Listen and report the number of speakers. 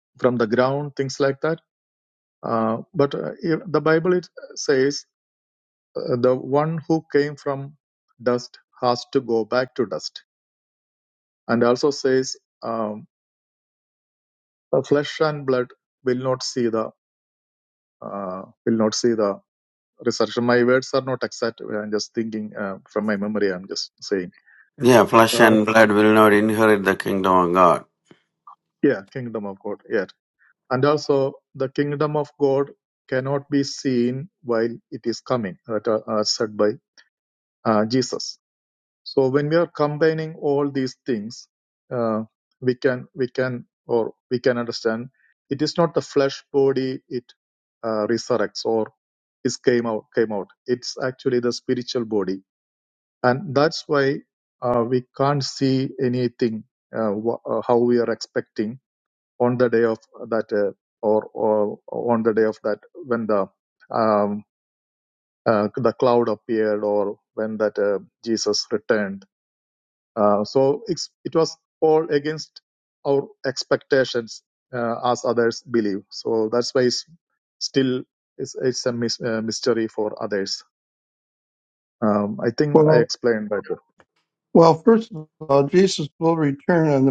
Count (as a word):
three